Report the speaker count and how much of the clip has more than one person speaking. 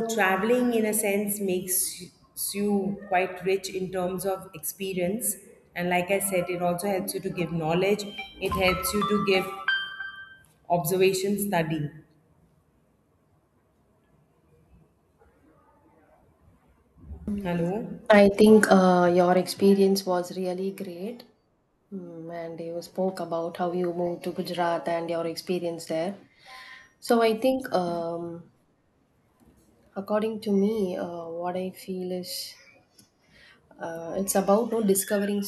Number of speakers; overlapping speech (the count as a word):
two, no overlap